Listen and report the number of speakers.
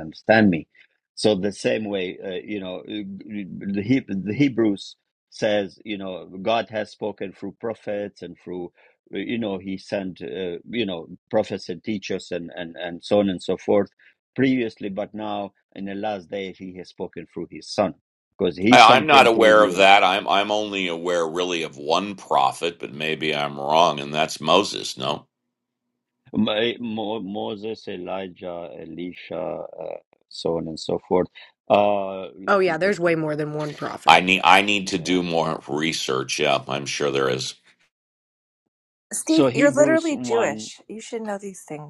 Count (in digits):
4